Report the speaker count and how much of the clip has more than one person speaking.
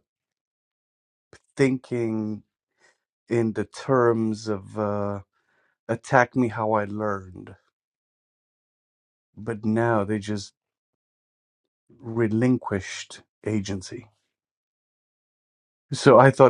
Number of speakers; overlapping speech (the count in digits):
1, no overlap